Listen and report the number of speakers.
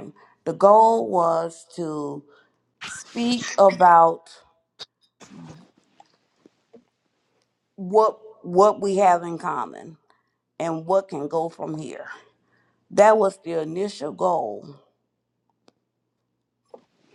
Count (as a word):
one